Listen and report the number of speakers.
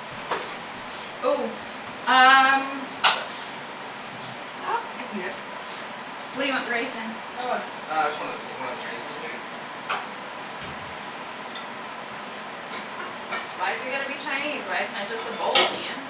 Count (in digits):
2